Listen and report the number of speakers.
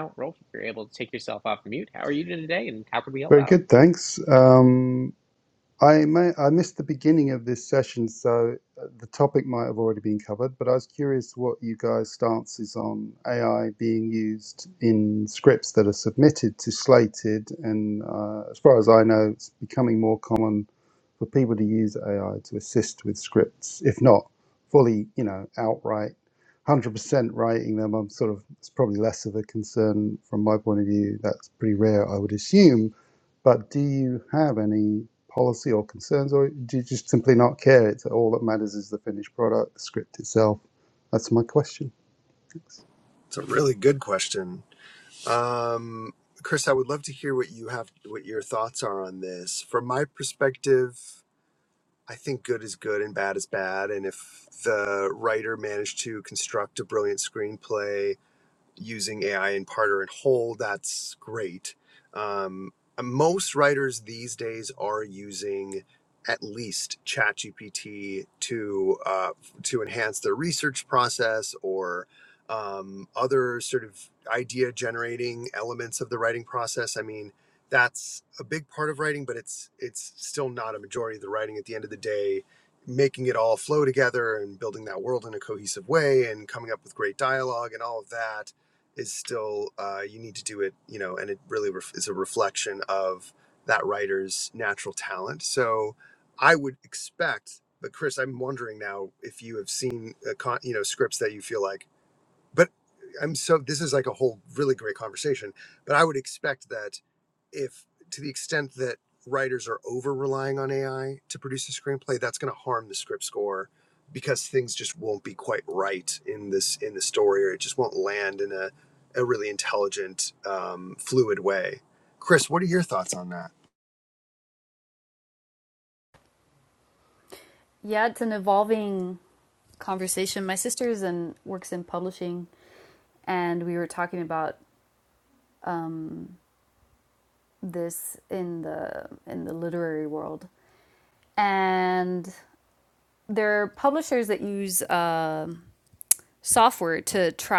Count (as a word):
four